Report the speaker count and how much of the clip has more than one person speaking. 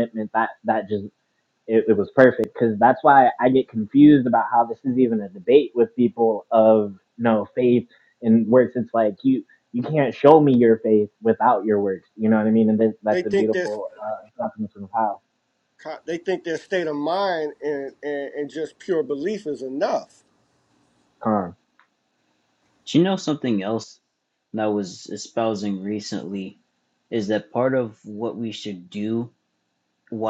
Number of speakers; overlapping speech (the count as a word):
three, about 2%